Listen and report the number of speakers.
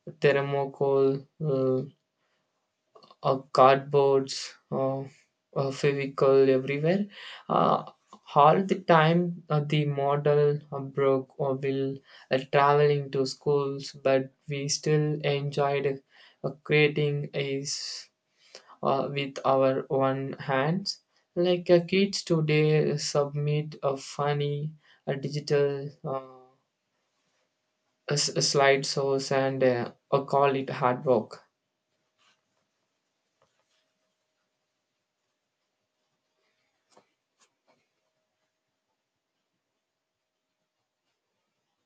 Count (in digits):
1